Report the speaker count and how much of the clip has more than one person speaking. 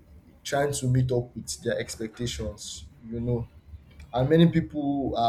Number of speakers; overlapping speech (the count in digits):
1, no overlap